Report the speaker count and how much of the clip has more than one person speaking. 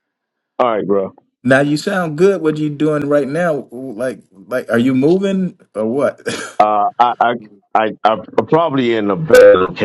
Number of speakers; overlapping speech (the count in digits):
2, no overlap